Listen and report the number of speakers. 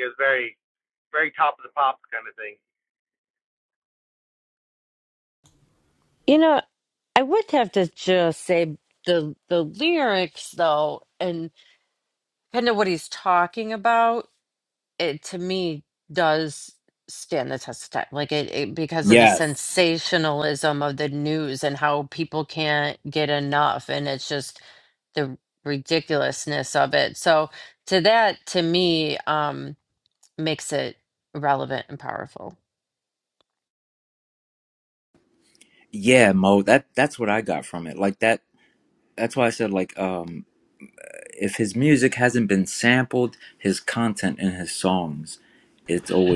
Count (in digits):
3